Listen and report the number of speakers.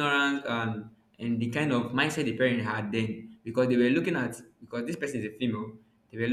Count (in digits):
1